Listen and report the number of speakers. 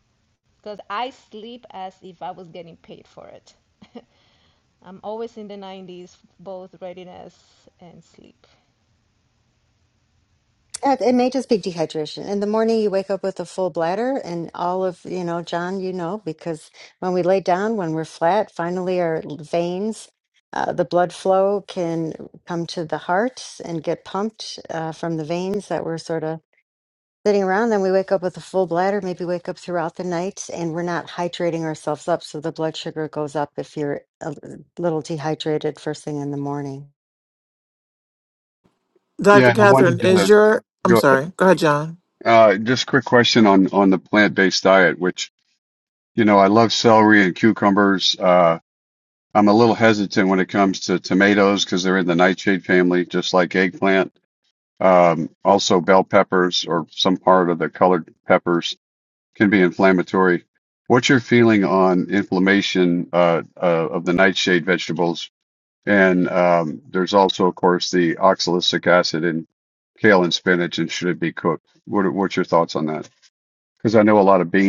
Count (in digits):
4